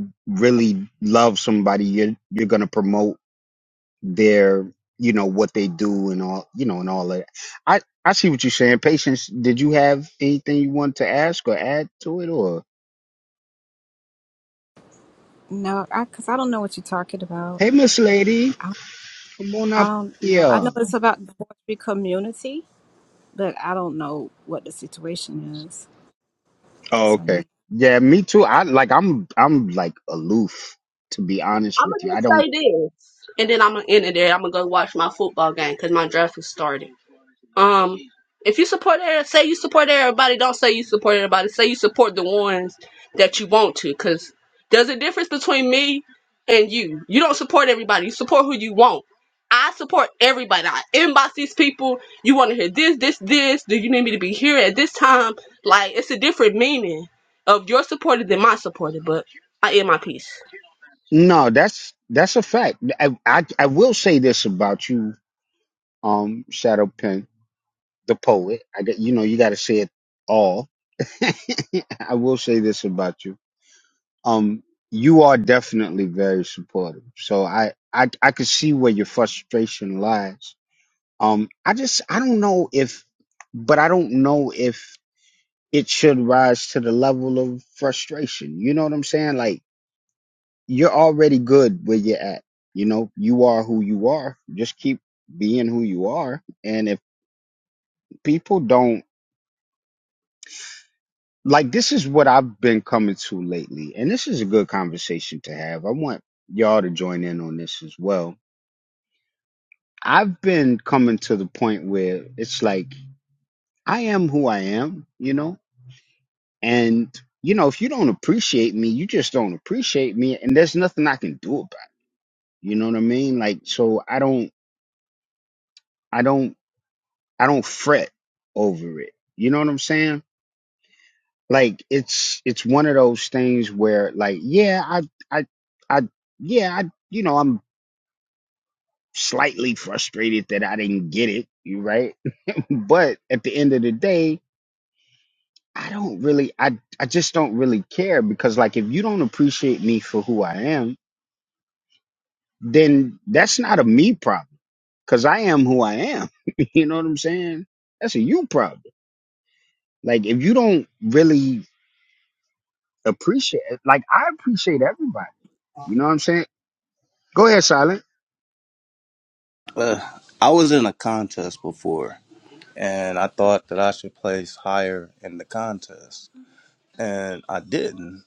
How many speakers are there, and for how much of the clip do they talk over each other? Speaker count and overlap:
four, about 1%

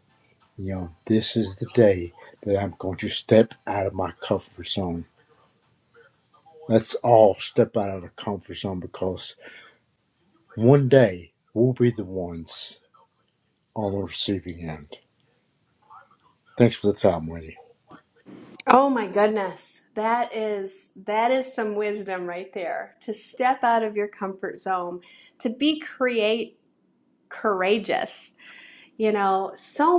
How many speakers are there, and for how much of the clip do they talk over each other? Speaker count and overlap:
two, no overlap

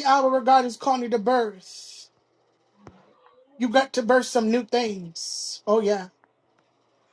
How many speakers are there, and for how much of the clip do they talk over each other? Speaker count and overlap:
one, no overlap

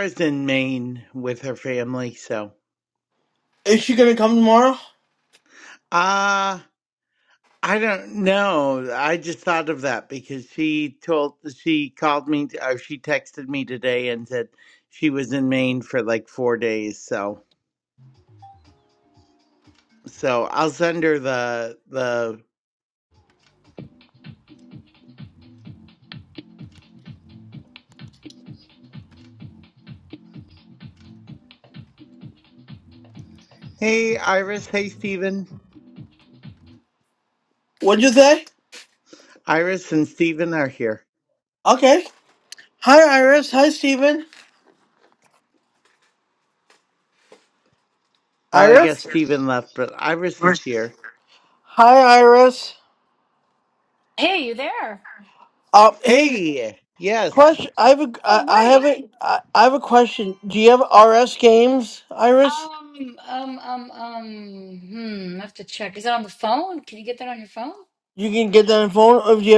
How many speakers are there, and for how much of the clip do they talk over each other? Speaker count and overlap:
three, about 3%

